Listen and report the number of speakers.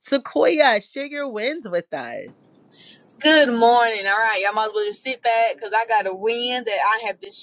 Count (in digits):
2